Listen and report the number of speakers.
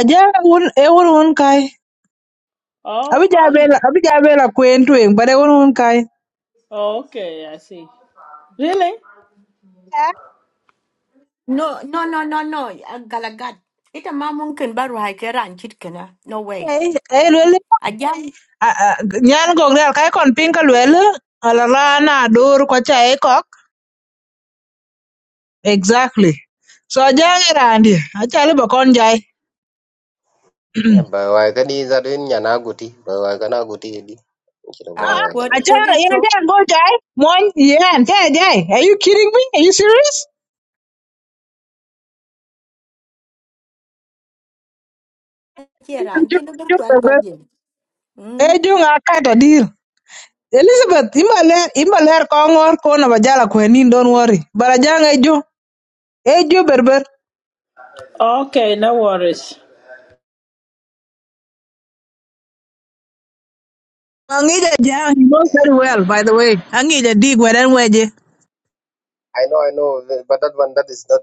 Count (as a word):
four